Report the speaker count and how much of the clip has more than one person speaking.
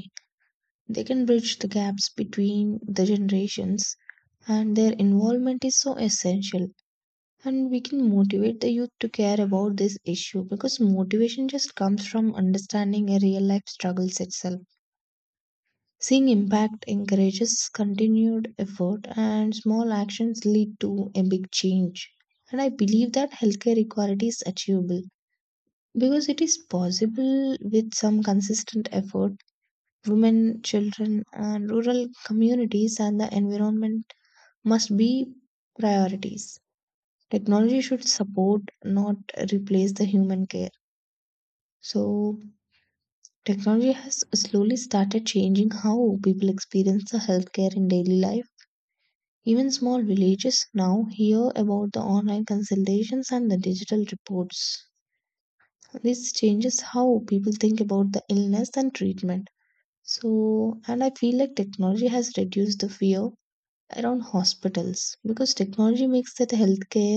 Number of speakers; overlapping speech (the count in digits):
1, no overlap